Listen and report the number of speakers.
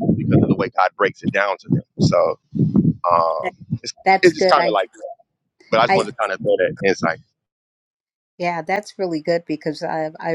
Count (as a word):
two